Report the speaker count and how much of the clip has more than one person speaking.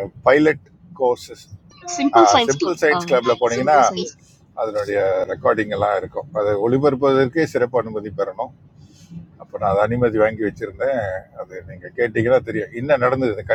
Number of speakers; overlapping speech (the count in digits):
2, about 4%